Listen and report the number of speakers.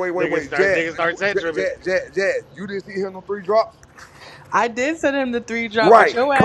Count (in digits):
3